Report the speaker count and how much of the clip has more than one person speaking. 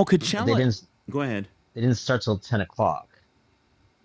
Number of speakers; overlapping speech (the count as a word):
two, about 6%